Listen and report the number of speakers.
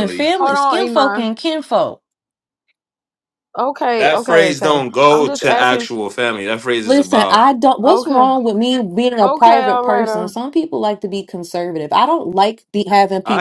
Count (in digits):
3